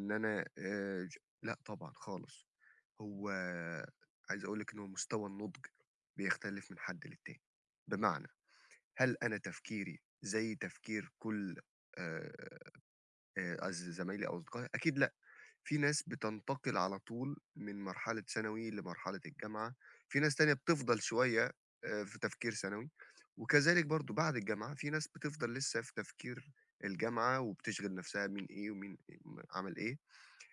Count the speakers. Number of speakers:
1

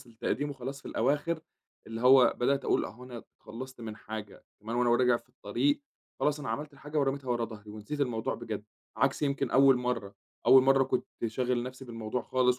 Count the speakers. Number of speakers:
1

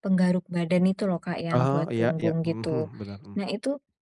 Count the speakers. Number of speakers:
2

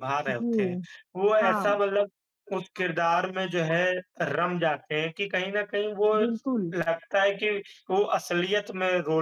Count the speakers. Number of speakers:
2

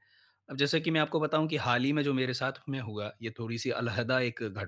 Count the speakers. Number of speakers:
1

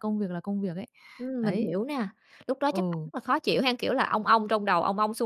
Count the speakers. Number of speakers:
2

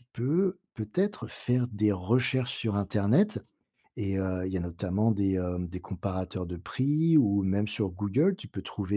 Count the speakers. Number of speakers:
1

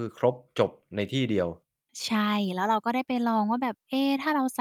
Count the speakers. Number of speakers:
2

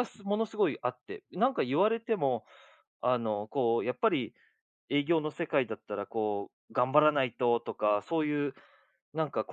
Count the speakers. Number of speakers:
1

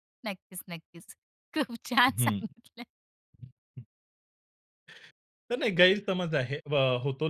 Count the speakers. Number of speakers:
2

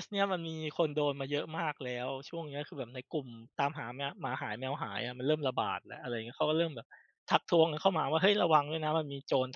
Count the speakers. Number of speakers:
1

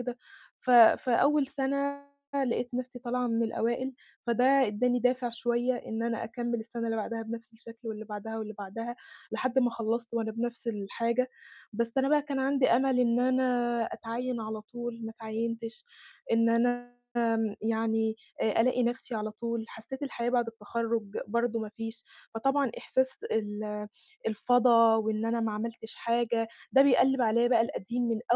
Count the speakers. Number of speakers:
1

